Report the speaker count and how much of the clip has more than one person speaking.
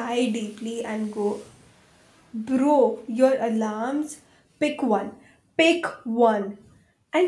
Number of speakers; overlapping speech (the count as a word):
one, no overlap